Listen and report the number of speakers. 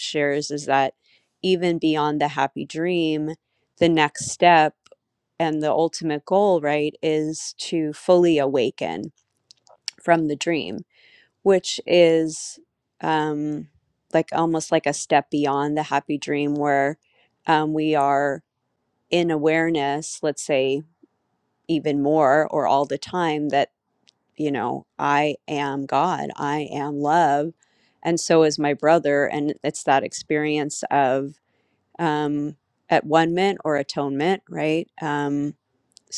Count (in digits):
1